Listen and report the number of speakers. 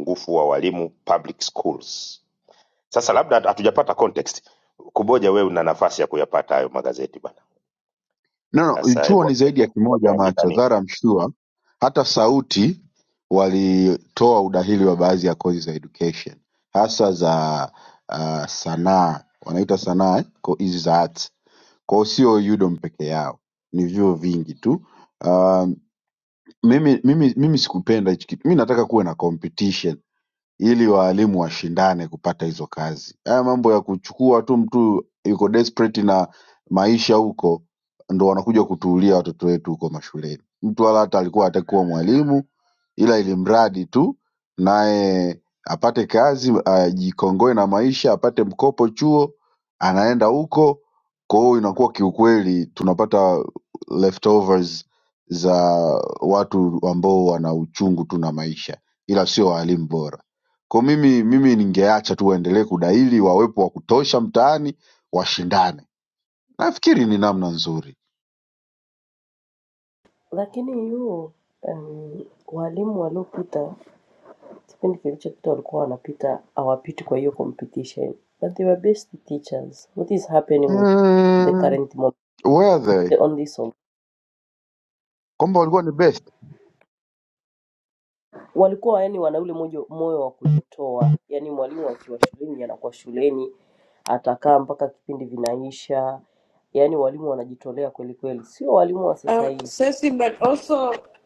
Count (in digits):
4